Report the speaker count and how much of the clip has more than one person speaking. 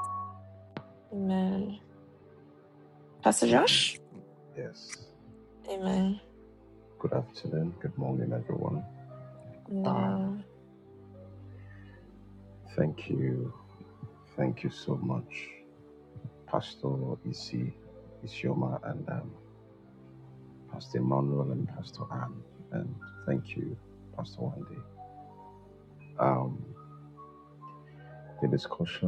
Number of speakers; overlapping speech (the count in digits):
2, about 3%